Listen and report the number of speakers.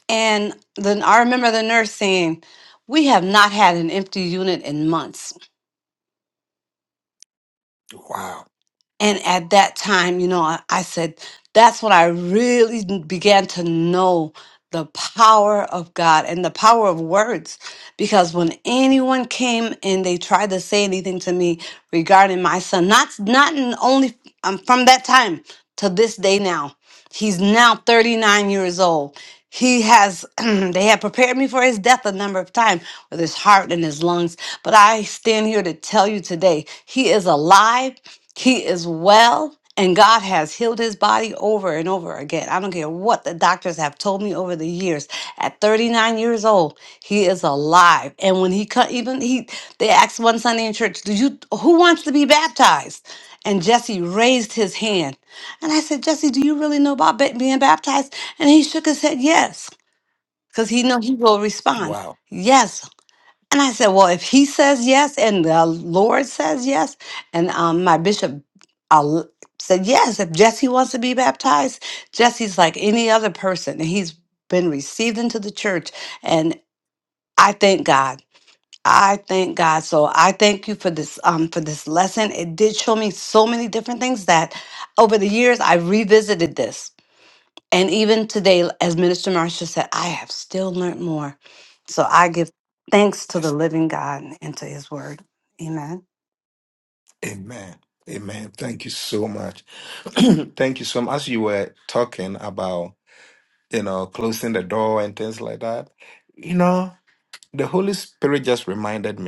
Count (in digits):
2